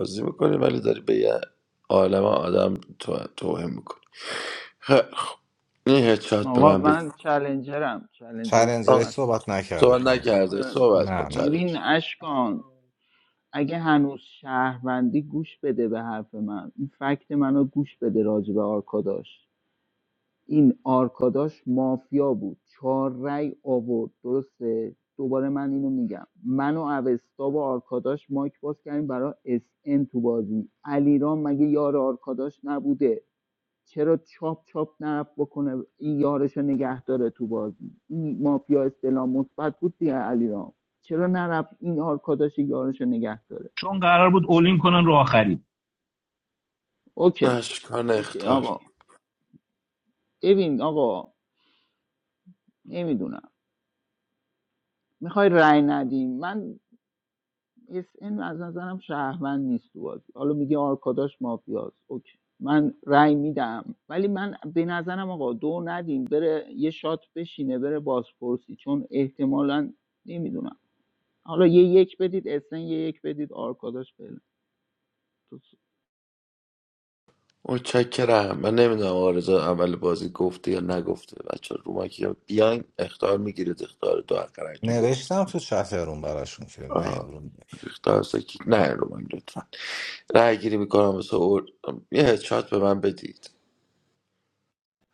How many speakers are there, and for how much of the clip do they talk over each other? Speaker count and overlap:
4, about 5%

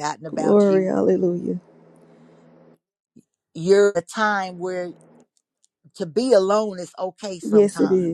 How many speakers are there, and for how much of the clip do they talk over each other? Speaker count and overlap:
2, about 15%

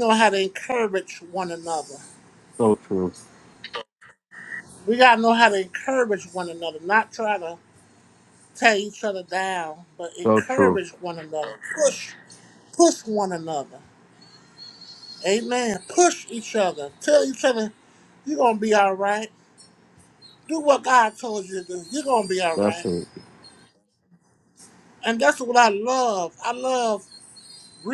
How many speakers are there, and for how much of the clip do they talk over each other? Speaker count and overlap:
2, about 3%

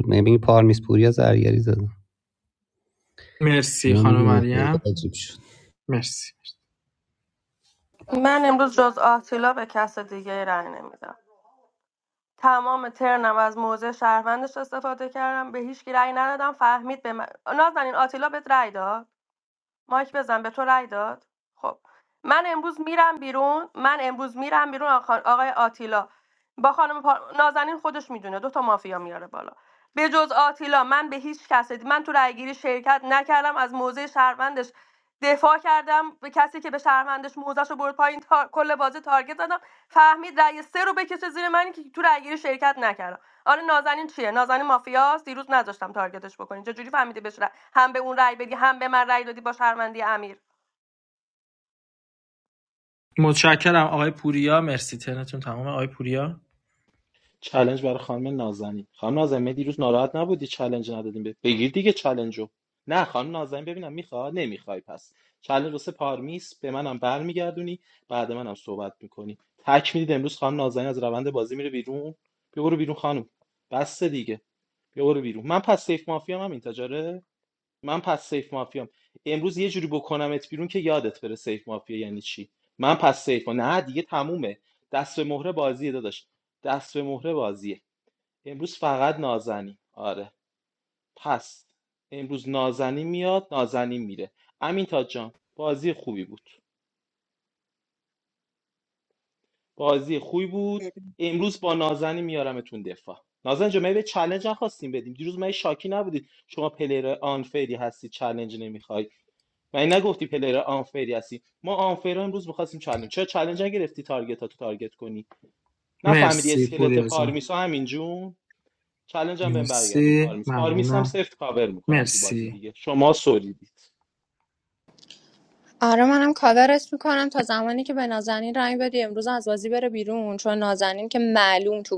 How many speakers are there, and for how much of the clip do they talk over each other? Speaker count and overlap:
5, about 3%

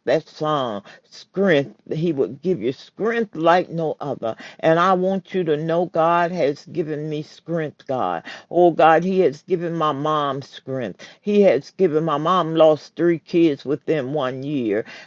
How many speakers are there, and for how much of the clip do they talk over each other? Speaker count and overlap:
1, no overlap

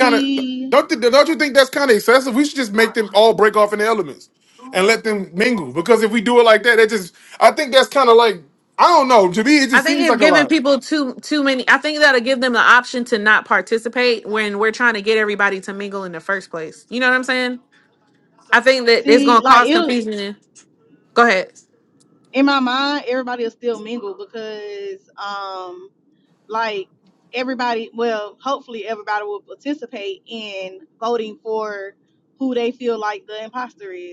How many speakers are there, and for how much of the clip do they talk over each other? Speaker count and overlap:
3, about 6%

